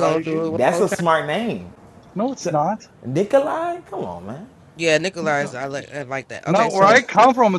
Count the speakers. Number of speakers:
three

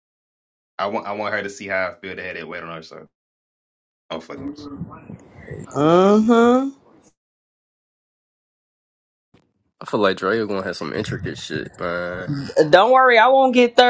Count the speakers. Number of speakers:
three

